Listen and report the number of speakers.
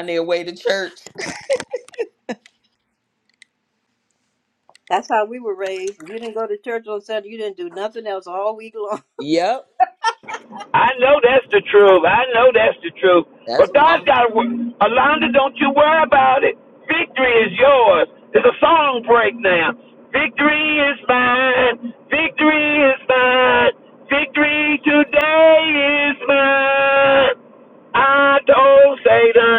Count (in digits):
3